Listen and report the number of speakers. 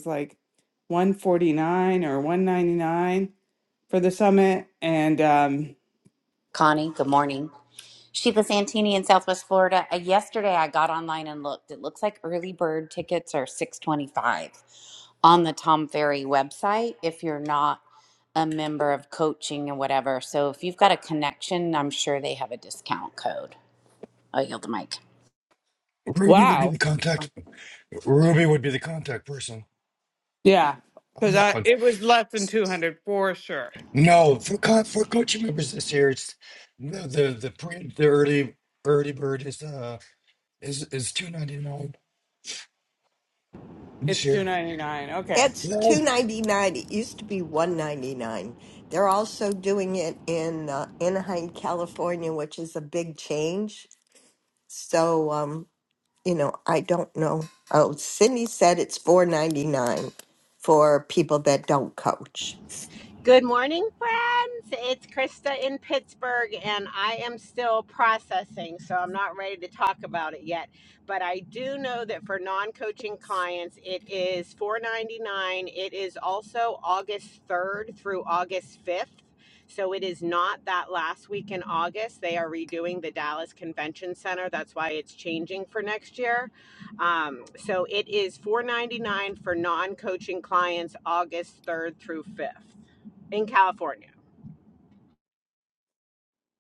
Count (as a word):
five